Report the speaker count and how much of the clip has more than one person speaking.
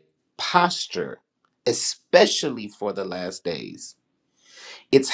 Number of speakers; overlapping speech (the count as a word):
one, no overlap